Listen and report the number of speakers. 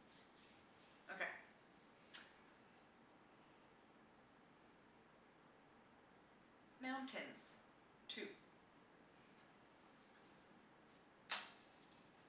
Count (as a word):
one